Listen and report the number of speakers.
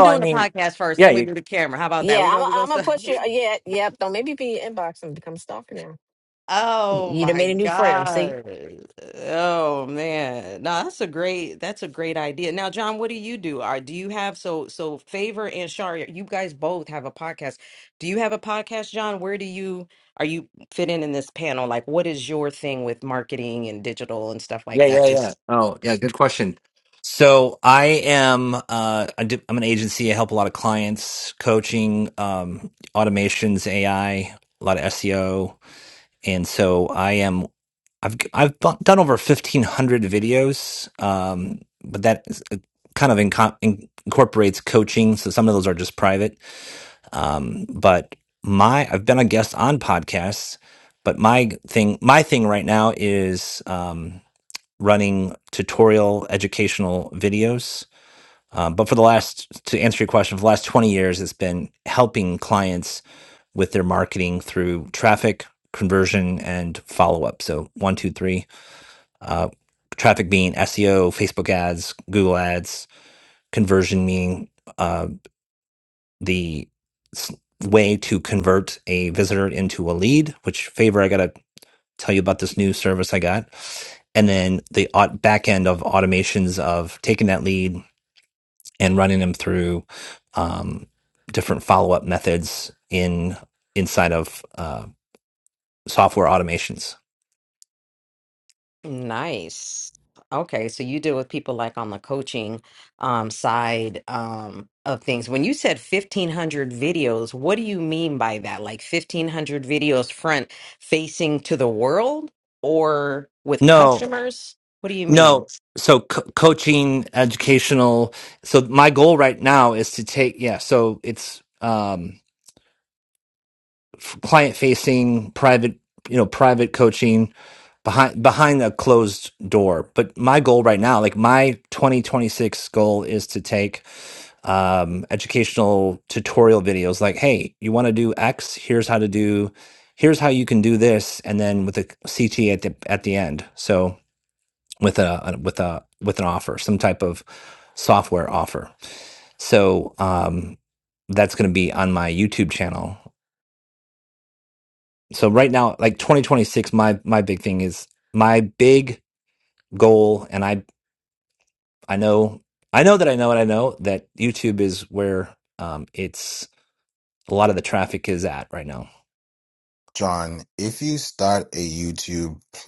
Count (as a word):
four